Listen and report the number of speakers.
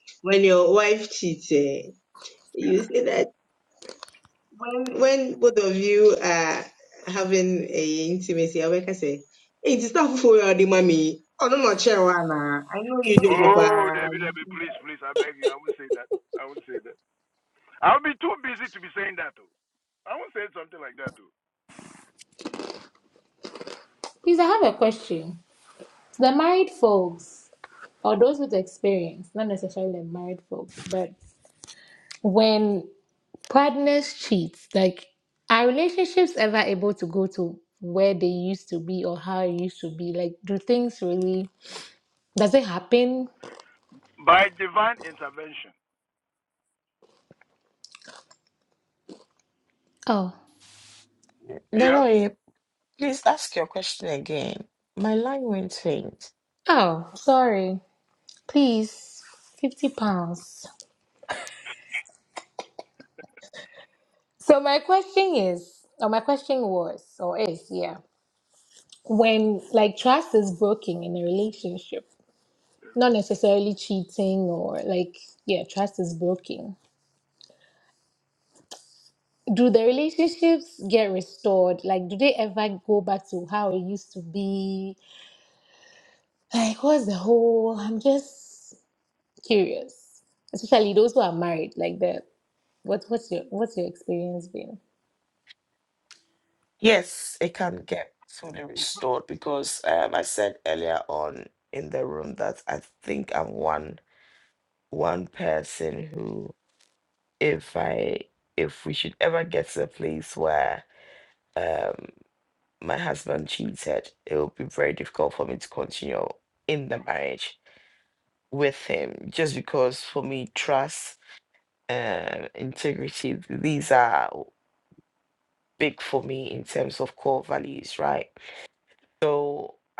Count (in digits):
4